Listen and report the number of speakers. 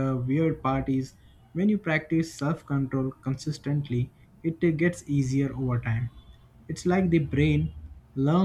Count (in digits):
1